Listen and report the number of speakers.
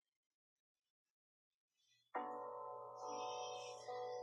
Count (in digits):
0